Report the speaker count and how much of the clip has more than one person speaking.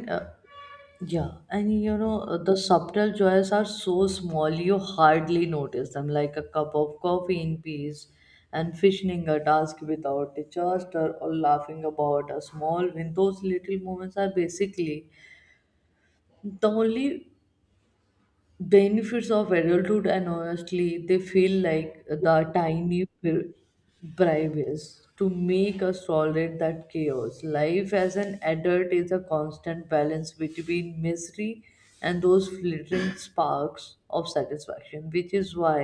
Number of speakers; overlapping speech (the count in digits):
1, no overlap